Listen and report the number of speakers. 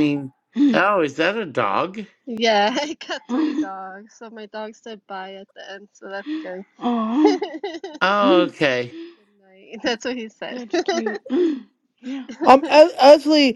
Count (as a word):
four